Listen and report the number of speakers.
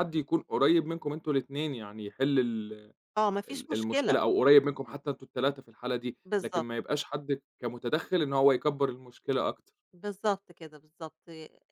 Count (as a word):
two